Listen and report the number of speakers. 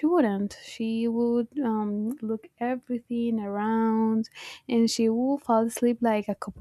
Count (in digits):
1